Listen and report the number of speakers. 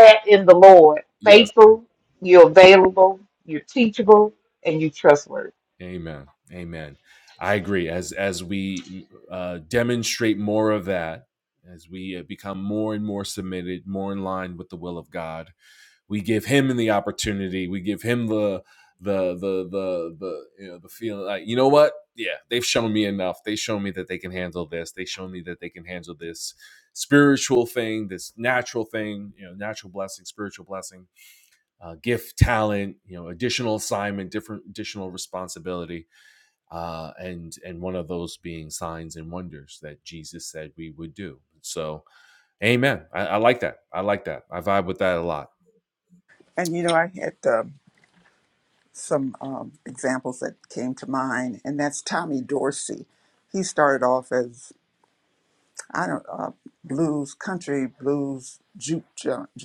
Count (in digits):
3